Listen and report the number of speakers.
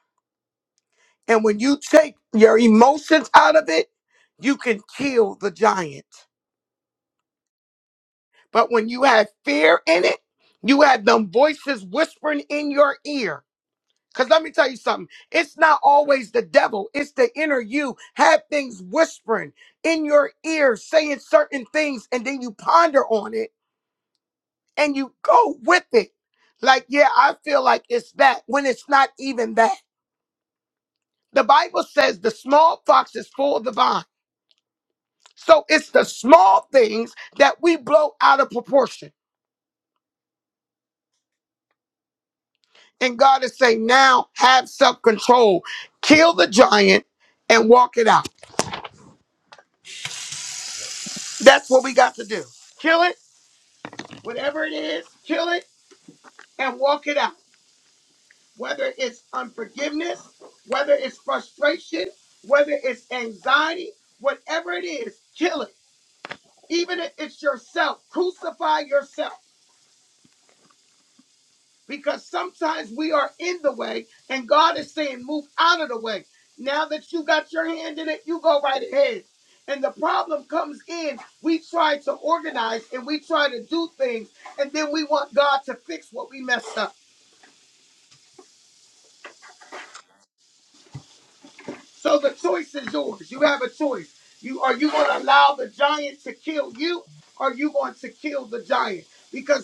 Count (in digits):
1